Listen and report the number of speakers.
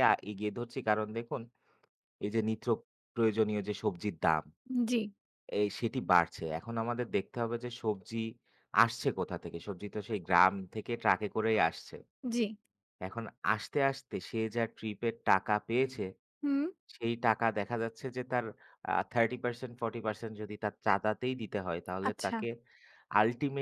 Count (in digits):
2